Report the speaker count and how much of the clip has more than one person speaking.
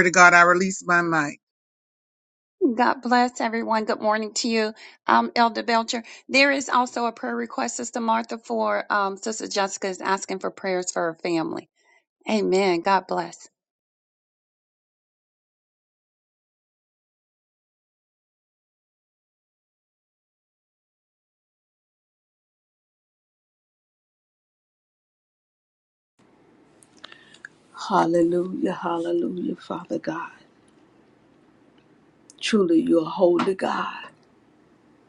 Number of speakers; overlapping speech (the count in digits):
3, no overlap